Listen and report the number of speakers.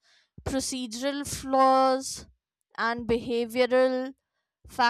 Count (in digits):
1